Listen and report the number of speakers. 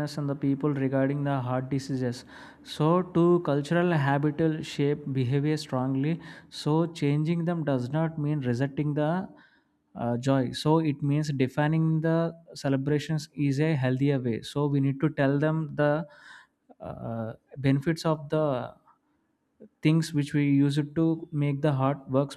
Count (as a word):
one